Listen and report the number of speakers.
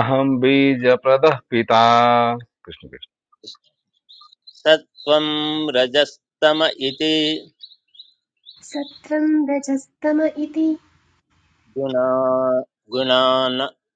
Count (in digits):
3